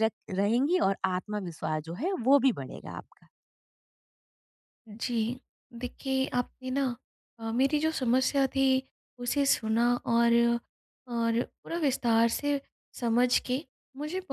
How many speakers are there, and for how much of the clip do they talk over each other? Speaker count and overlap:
2, no overlap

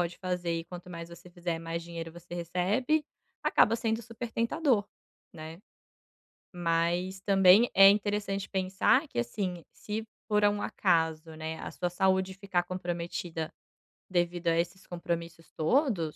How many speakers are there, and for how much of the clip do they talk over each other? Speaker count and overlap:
1, no overlap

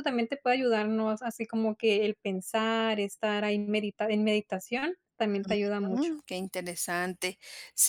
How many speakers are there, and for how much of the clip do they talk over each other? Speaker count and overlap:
2, about 3%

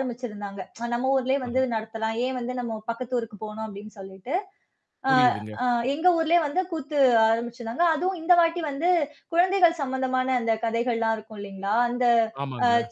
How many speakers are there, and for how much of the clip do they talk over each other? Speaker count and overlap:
2, about 3%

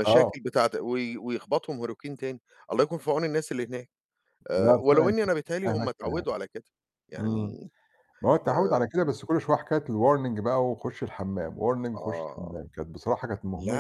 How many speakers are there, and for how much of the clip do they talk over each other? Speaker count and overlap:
2, about 23%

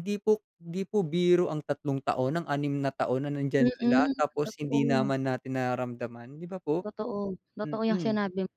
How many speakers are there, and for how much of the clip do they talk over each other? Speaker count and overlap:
2, about 24%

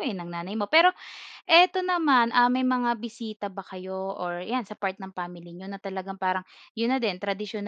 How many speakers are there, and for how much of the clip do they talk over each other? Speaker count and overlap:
1, no overlap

